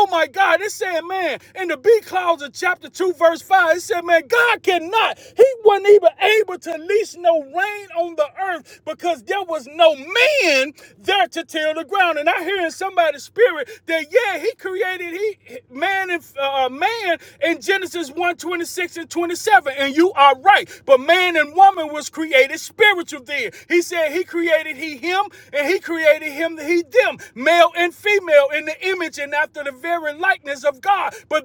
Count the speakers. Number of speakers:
one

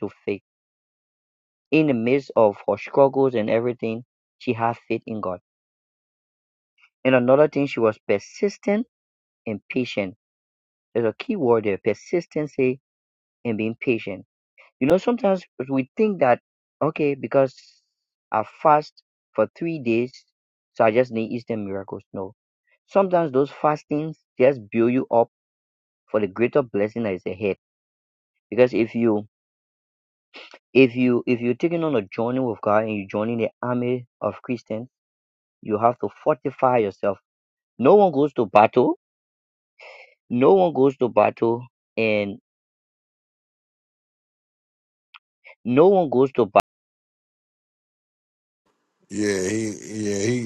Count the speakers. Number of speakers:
two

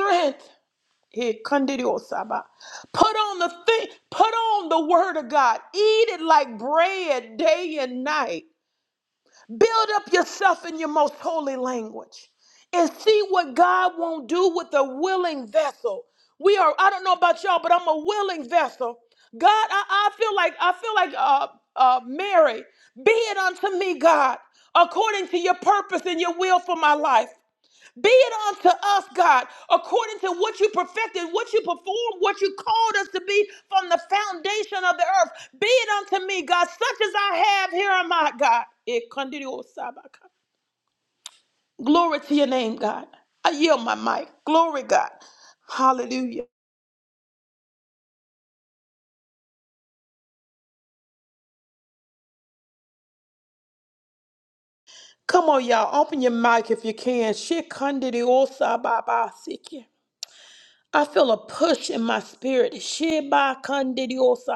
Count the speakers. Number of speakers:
one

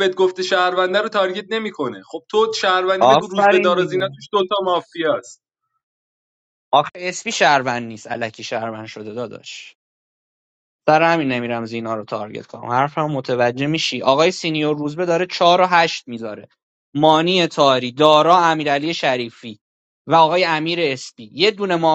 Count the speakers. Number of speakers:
two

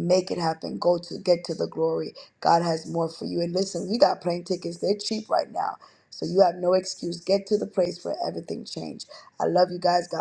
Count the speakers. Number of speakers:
one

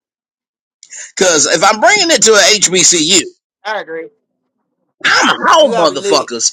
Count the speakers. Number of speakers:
two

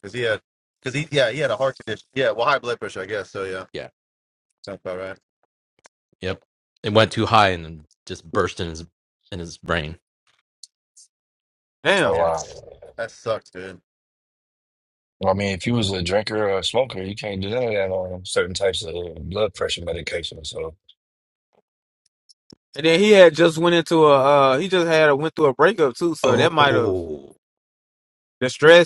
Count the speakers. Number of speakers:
four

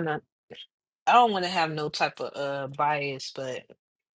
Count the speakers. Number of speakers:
one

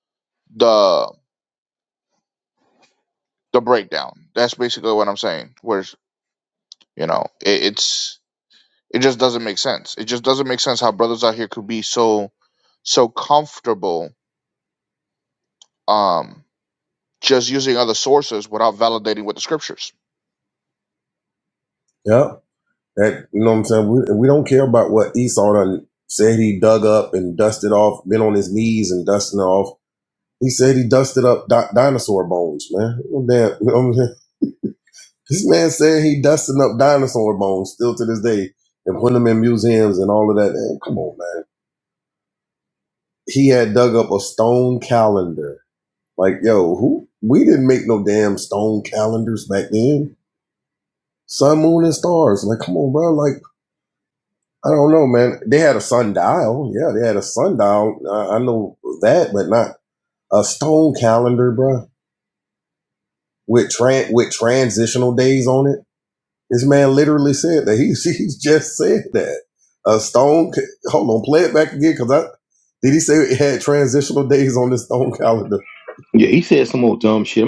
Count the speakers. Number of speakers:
three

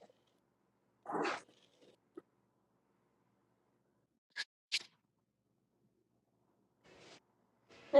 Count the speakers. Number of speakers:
zero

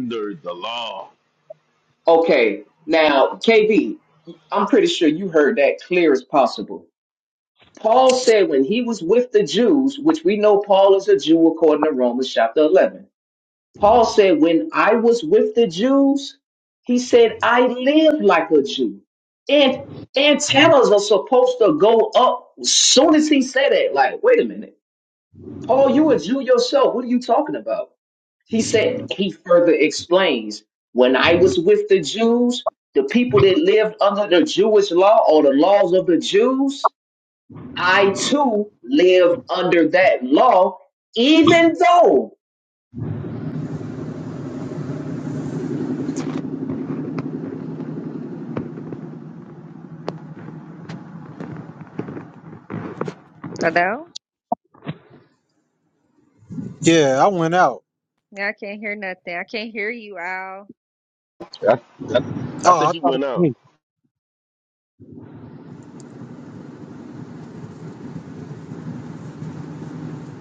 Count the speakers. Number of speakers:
four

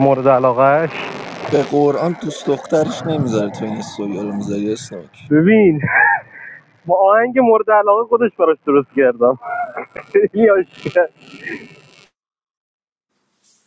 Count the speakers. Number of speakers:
two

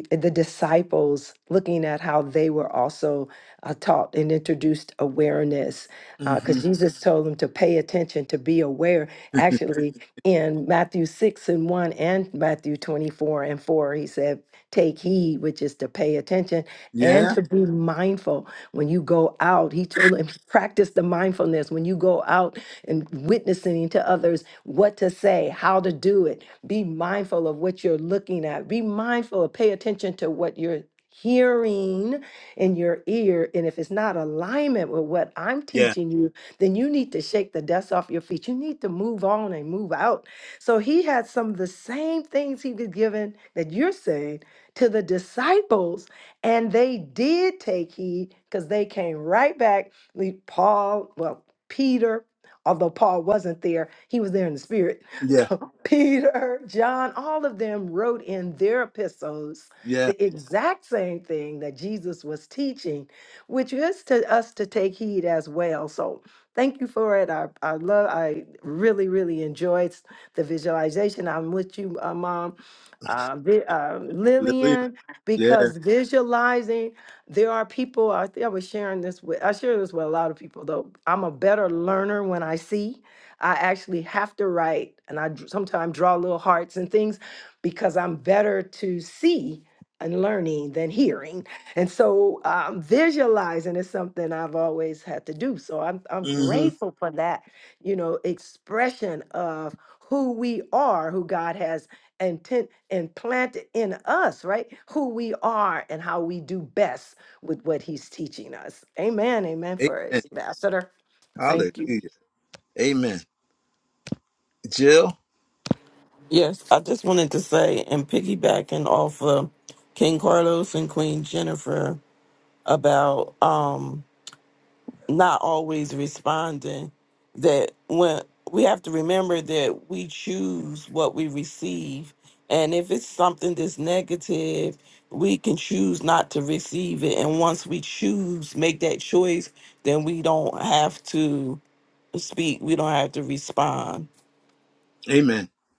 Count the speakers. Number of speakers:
three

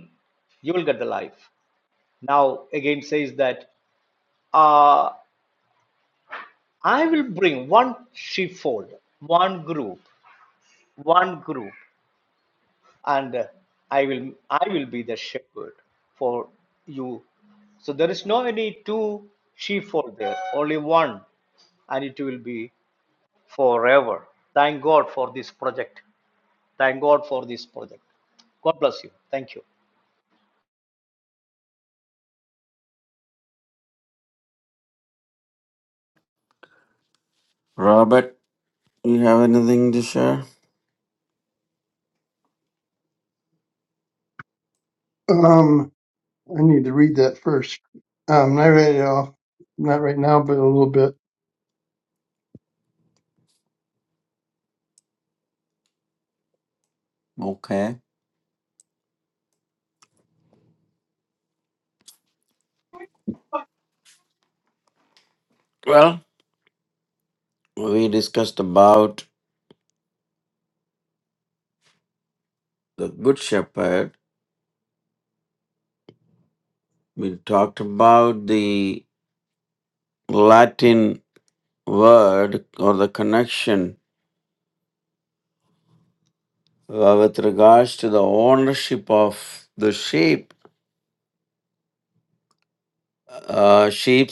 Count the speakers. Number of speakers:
three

